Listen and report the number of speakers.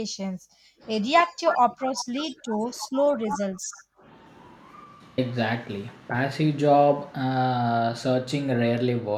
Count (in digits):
2